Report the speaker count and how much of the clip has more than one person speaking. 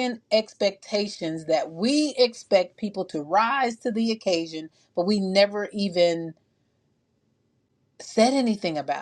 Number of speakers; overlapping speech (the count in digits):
1, no overlap